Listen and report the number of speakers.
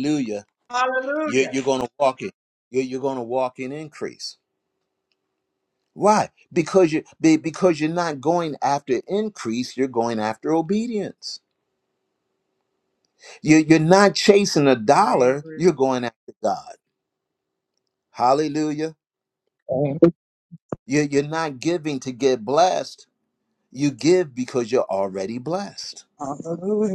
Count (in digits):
3